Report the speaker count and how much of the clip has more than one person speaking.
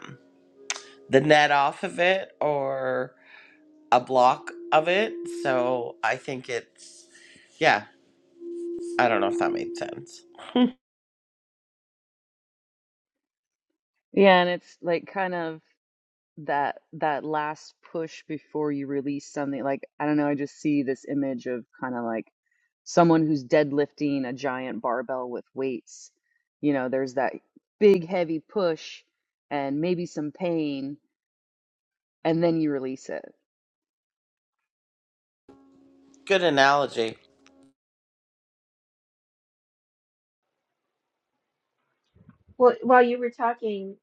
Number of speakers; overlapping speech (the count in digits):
3, no overlap